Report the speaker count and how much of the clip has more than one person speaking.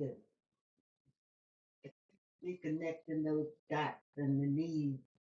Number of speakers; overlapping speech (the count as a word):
one, no overlap